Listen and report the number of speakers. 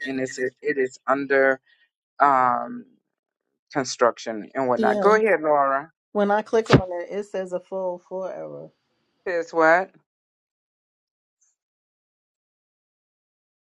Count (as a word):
two